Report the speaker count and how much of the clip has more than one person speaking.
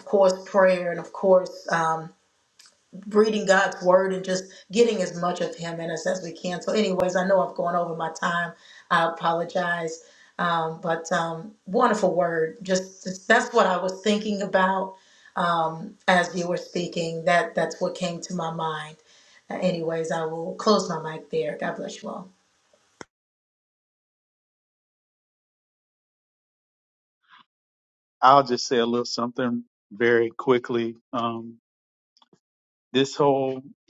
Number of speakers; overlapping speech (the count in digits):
2, no overlap